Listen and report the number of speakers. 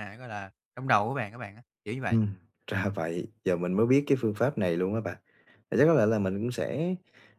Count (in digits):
2